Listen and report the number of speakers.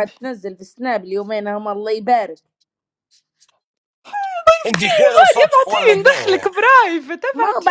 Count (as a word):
three